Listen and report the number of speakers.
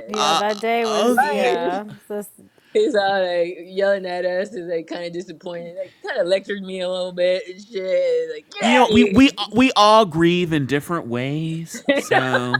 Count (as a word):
three